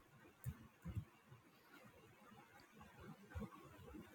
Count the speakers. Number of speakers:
0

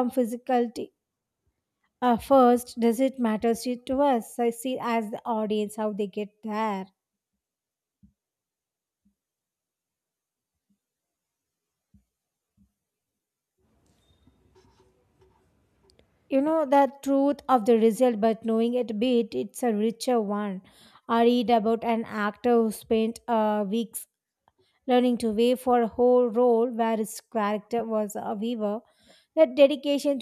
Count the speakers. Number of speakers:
1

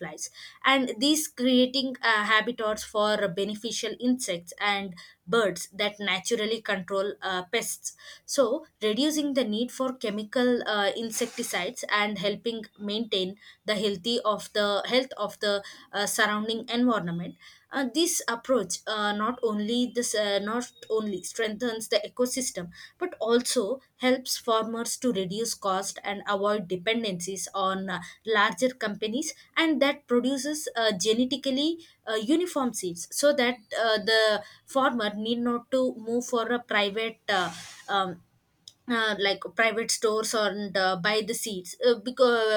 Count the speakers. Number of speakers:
1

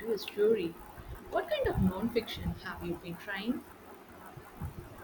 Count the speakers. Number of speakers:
1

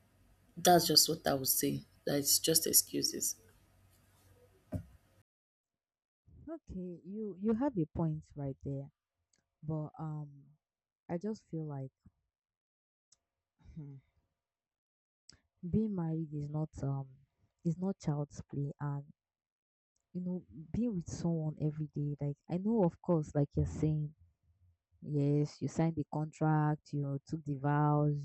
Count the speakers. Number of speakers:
2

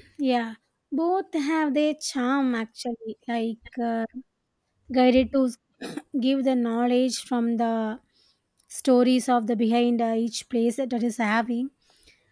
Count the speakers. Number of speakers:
1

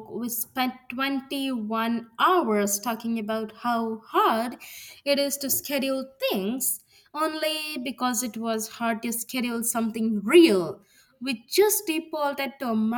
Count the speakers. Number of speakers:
1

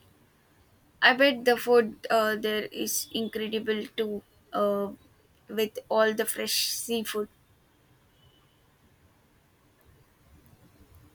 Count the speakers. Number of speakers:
1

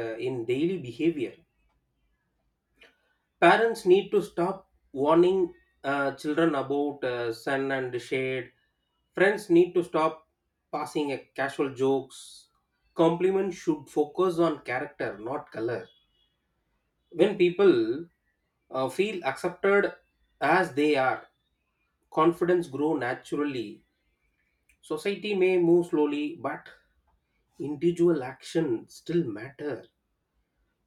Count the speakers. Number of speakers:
1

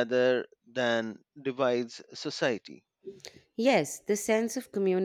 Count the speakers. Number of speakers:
2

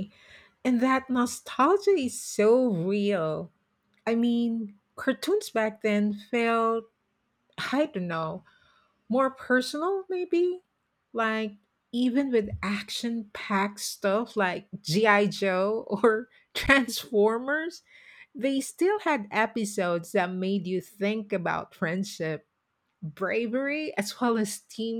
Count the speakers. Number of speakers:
1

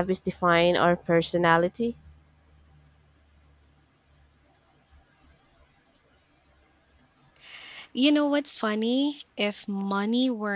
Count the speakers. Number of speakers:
2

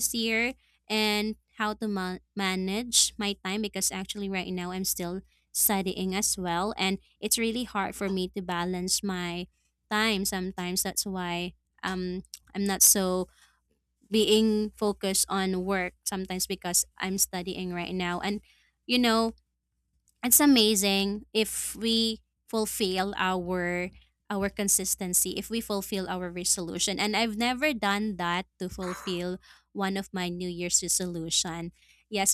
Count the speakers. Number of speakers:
1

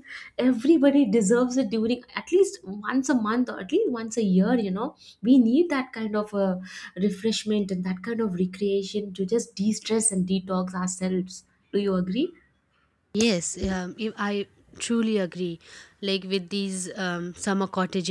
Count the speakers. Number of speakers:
2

